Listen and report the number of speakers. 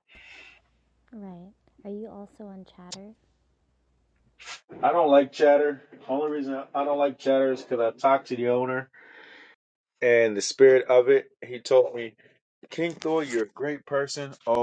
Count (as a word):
two